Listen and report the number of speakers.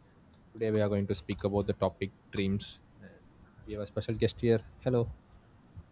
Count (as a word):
one